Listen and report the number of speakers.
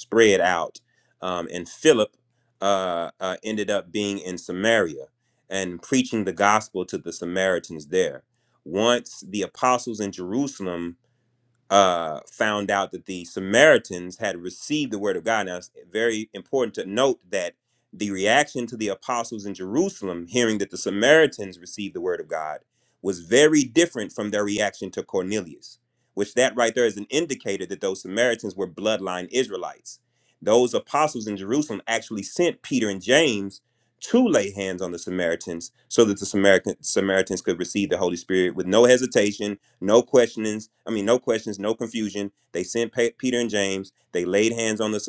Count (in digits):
1